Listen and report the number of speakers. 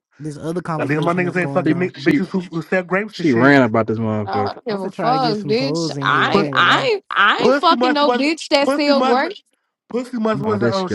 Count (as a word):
four